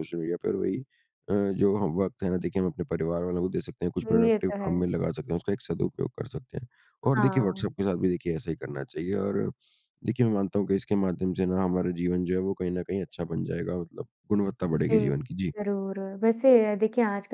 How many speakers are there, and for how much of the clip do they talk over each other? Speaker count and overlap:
2, about 9%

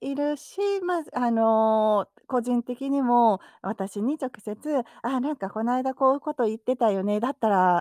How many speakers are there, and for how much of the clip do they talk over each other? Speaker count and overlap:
1, no overlap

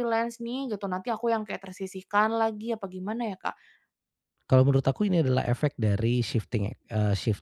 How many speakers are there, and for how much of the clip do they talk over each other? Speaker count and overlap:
2, no overlap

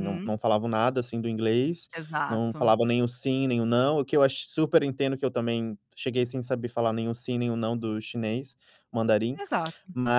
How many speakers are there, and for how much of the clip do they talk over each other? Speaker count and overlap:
2, about 7%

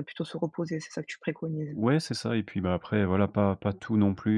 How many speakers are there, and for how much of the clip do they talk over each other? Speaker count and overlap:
2, about 1%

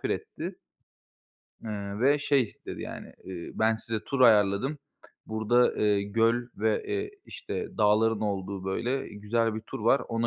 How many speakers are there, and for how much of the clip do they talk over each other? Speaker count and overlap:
1, no overlap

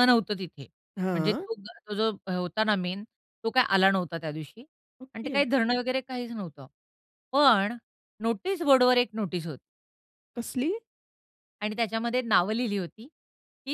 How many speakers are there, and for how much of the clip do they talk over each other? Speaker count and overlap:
2, about 5%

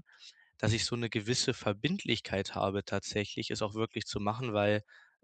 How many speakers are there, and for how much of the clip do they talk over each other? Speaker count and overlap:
1, no overlap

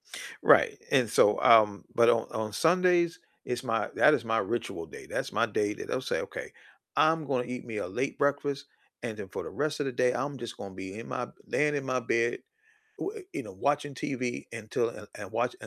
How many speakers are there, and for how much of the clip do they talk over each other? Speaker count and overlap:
1, no overlap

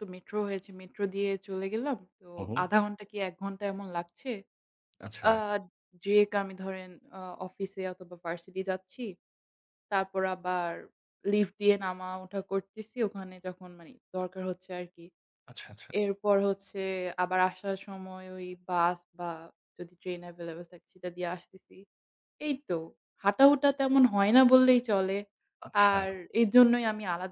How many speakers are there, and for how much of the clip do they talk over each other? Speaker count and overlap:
2, about 2%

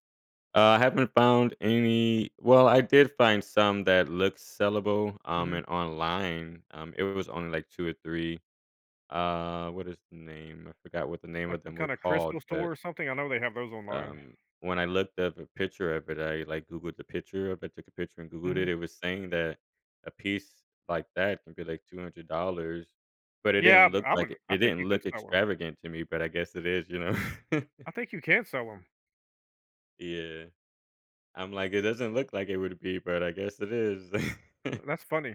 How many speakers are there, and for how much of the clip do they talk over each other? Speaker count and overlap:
2, about 11%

